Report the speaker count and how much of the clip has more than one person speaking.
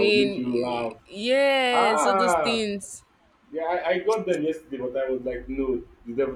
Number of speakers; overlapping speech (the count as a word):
two, about 30%